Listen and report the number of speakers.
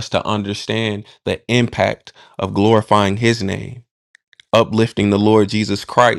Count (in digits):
1